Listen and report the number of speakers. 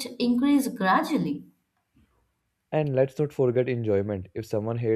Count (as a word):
two